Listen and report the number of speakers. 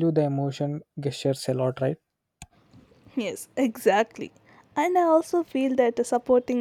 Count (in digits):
2